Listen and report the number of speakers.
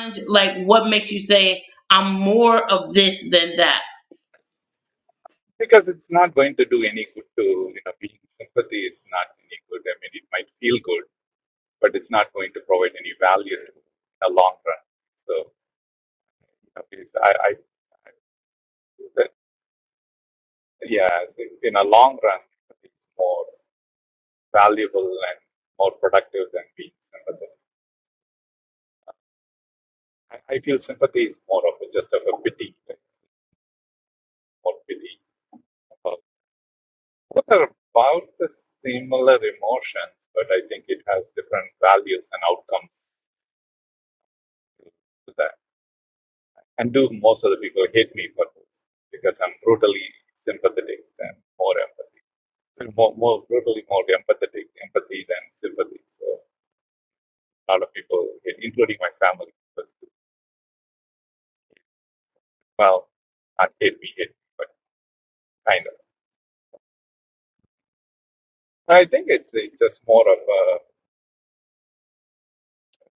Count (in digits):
2